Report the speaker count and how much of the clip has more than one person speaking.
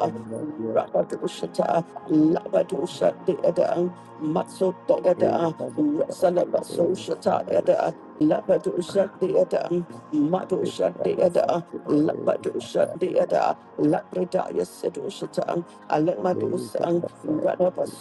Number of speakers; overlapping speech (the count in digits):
2, about 37%